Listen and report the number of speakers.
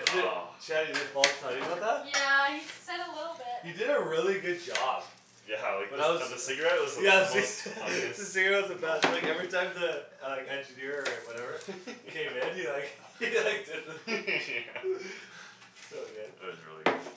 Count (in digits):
3